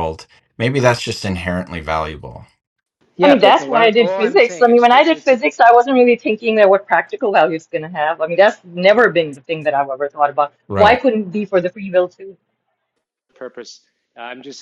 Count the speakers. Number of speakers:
three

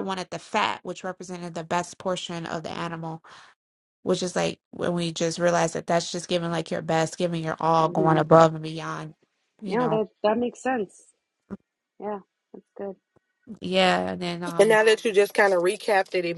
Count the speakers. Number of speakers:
three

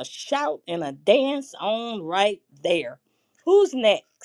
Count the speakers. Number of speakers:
one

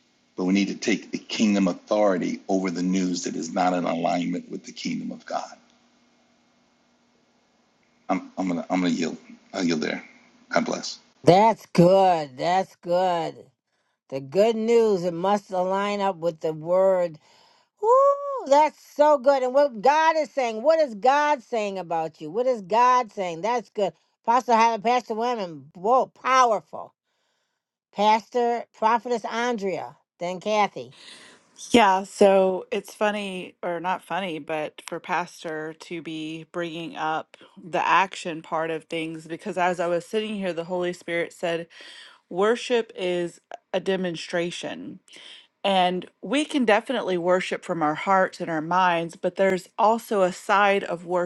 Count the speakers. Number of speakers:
three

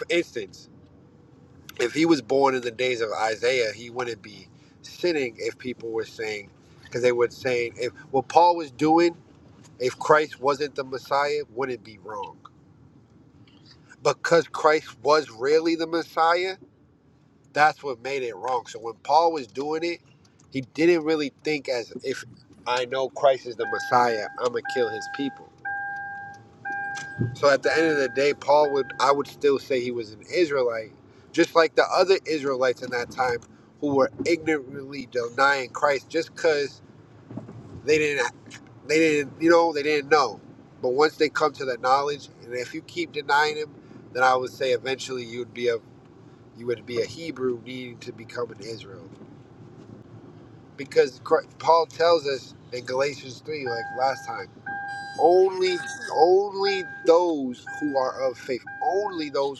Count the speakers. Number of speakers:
one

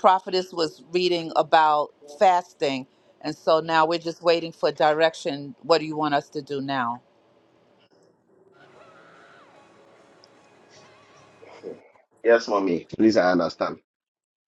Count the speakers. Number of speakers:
two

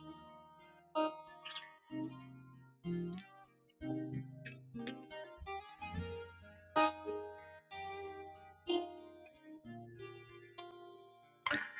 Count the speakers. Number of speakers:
zero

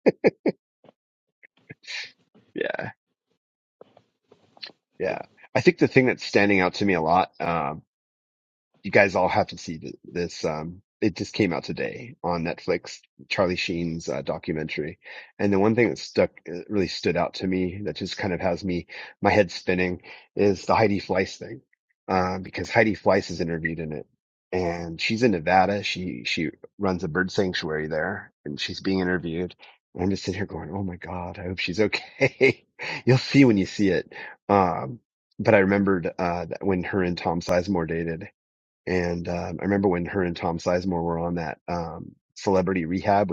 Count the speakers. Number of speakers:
one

